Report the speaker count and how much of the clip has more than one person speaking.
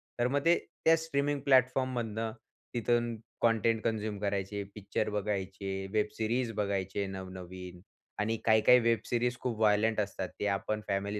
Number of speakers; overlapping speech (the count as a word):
one, no overlap